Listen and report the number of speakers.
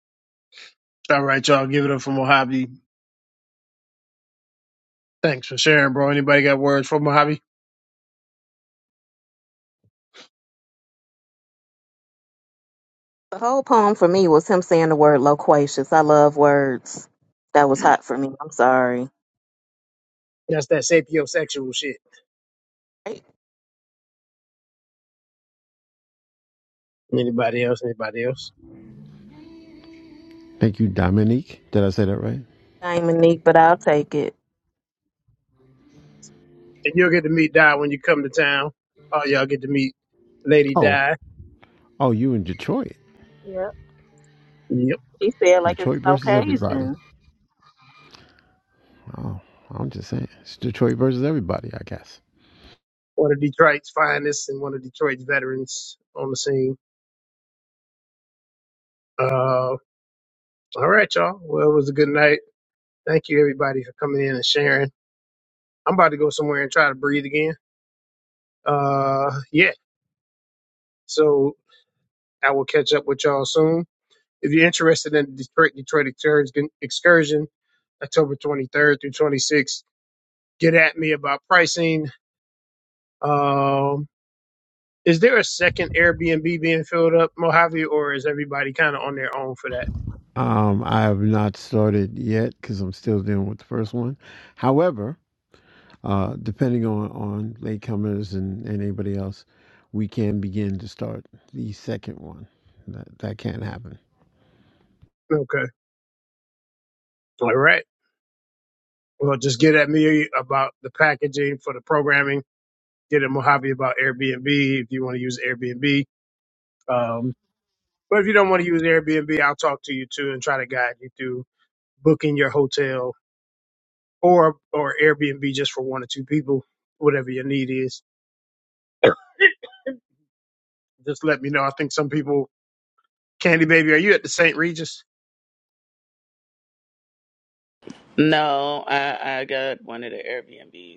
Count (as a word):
four